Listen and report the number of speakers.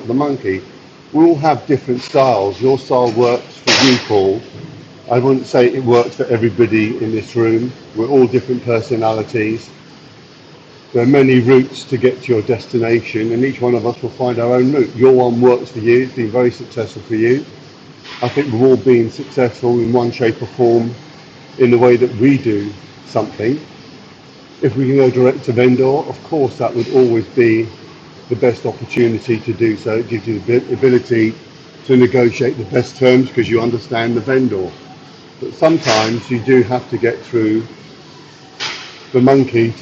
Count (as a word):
one